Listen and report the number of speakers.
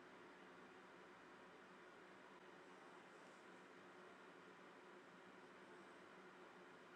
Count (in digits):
0